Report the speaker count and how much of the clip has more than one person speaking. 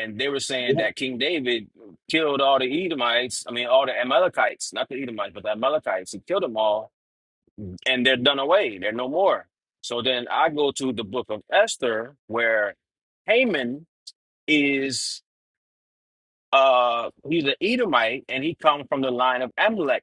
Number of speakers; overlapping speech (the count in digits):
1, no overlap